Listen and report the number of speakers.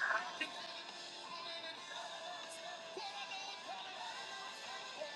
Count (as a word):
zero